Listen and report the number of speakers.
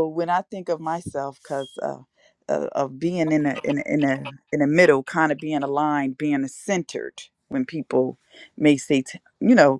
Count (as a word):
one